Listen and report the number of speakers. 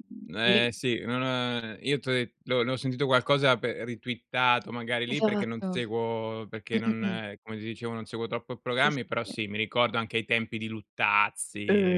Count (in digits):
2